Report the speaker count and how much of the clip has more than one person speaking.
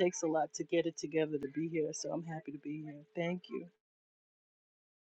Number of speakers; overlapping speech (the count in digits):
1, no overlap